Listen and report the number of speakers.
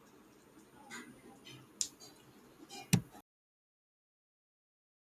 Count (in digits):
0